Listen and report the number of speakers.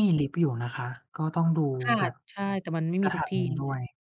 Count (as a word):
two